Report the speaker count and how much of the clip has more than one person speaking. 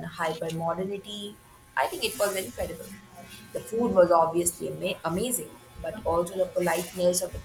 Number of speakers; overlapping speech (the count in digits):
1, no overlap